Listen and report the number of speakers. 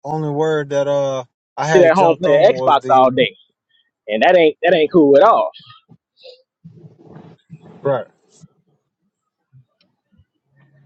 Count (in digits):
2